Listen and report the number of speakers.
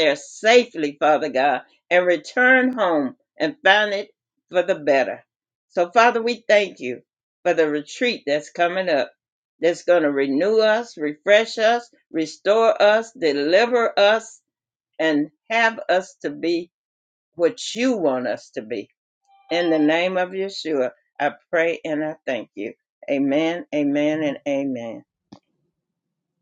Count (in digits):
1